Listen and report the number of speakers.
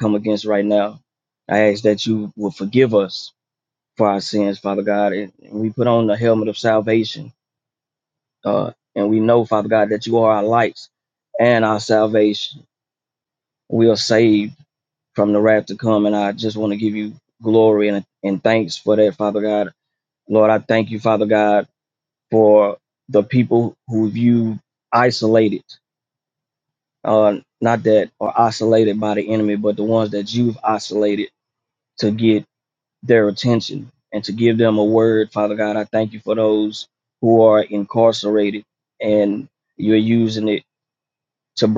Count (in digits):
1